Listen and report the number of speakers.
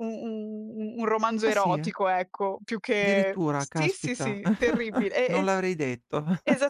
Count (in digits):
2